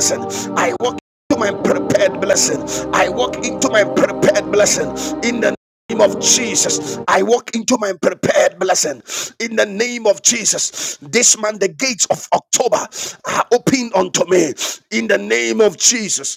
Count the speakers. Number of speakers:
one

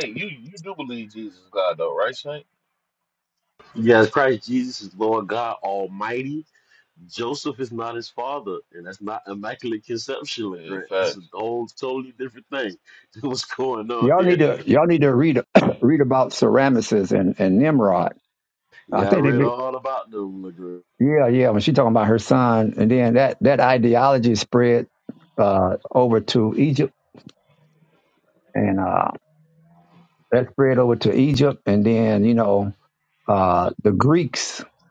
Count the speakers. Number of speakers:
three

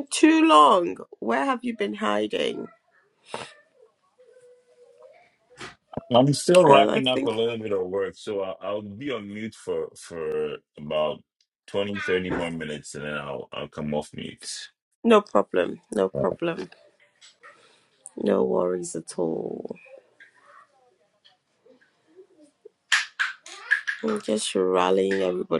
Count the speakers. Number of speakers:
two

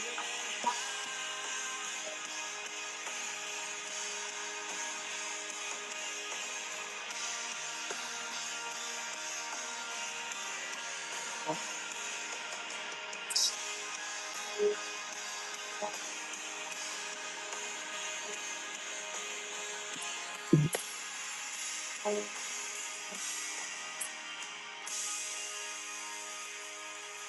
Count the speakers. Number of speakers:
zero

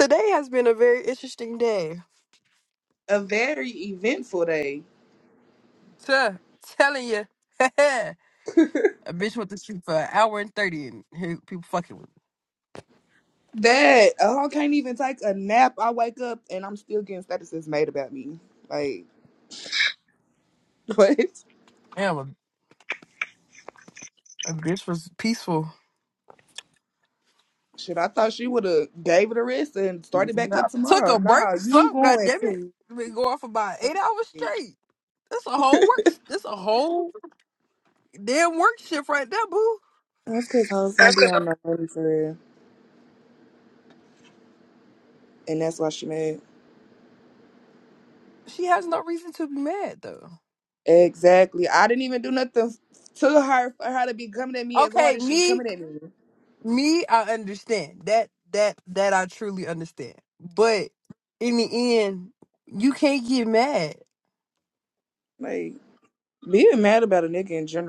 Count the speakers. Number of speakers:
two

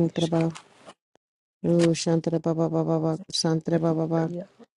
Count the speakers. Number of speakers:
two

